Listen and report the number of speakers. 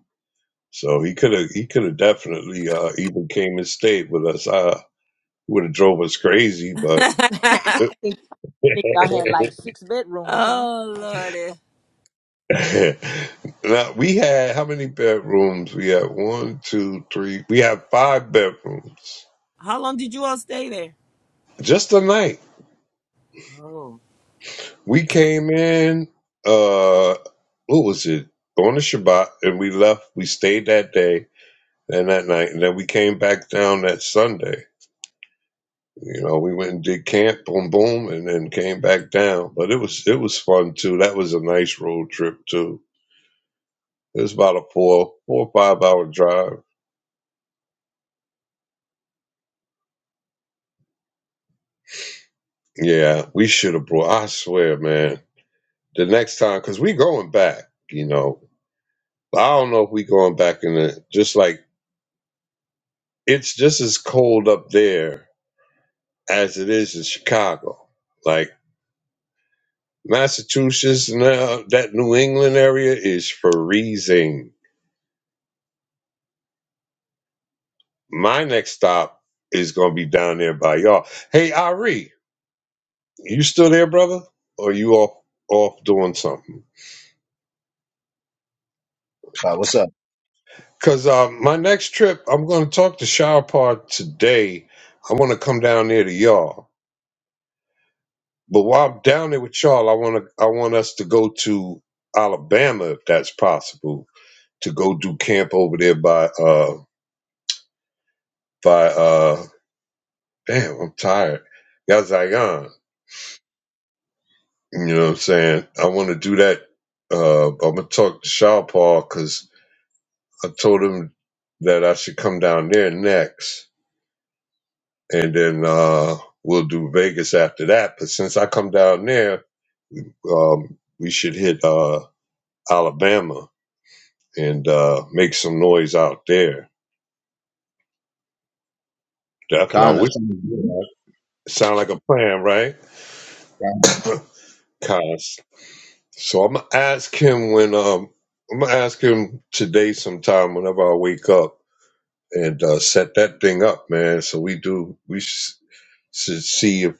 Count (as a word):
four